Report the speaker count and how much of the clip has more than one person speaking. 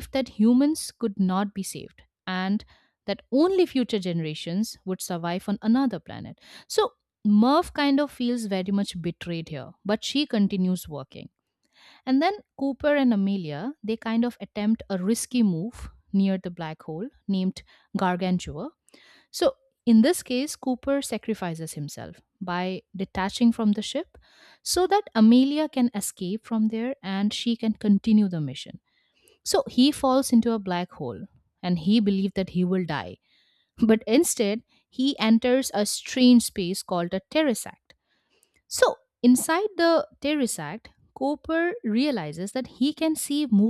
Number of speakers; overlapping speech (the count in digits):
1, no overlap